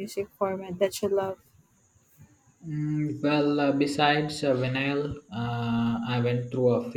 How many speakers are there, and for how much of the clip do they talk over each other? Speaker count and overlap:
two, no overlap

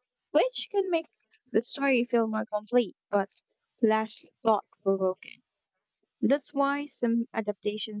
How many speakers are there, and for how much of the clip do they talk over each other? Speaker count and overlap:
one, no overlap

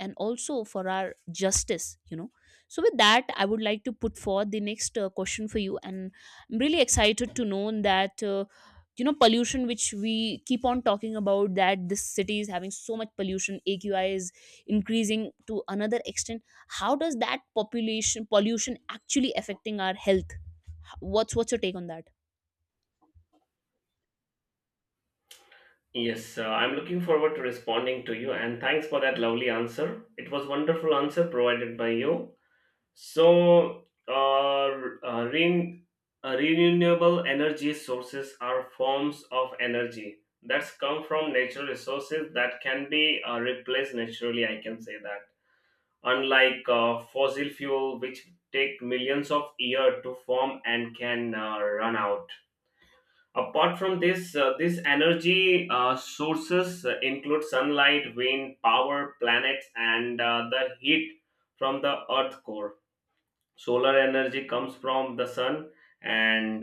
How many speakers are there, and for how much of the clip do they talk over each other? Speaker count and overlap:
two, no overlap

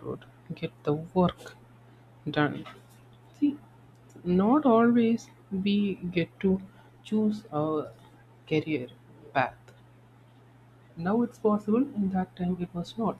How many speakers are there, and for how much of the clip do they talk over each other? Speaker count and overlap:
one, no overlap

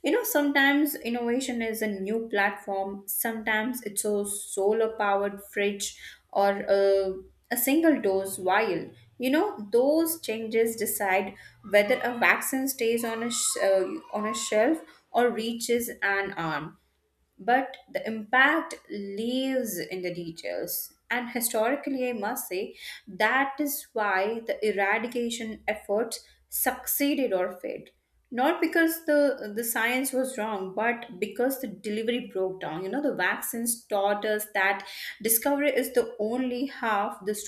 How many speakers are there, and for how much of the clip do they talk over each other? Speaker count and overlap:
one, no overlap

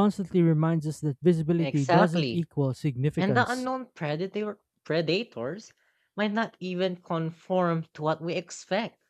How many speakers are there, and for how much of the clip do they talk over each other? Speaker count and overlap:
two, about 11%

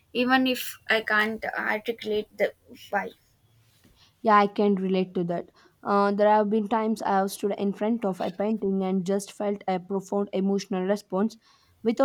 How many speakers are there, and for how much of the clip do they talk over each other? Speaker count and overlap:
two, no overlap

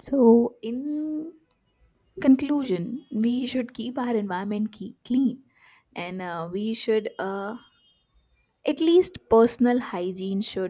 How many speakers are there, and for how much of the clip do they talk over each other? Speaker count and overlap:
one, no overlap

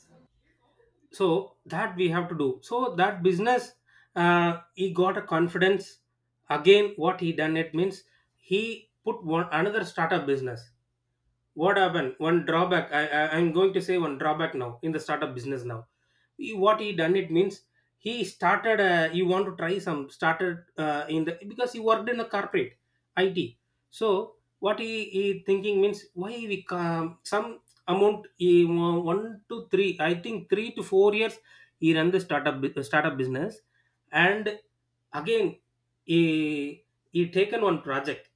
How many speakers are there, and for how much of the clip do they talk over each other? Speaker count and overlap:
one, no overlap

